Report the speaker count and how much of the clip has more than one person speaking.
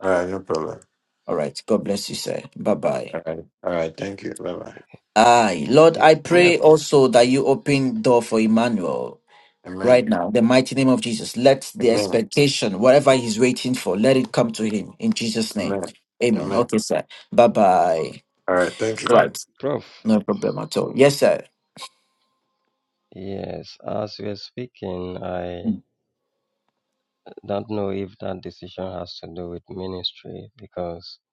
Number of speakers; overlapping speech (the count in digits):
3, about 7%